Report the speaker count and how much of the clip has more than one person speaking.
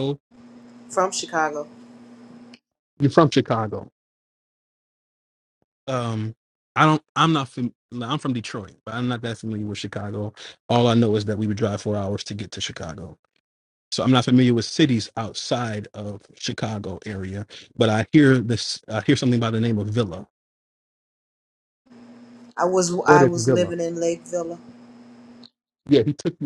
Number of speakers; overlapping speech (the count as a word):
two, about 2%